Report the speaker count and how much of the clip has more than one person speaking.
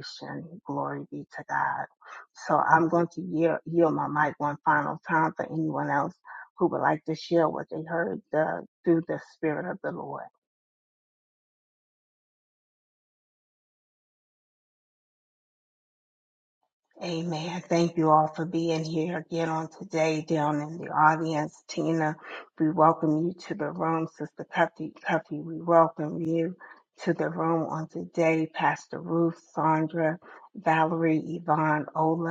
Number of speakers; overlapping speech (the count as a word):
one, no overlap